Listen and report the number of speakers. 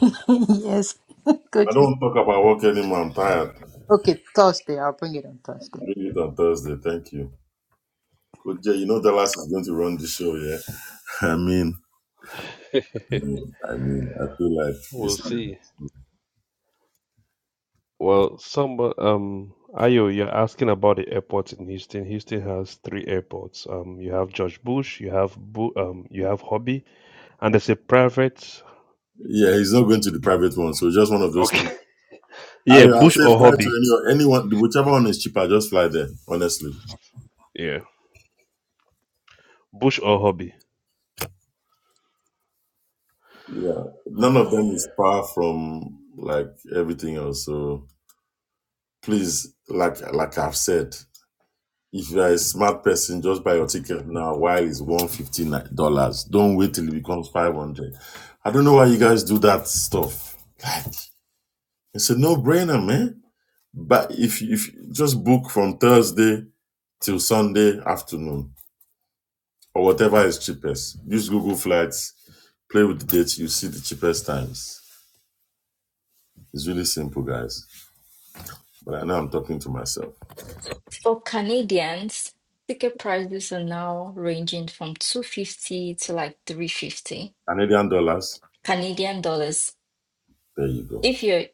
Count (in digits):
4